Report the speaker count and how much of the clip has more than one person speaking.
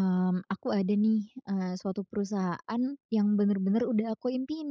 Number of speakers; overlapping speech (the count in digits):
1, no overlap